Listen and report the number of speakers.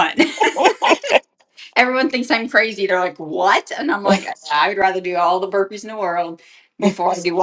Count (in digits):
1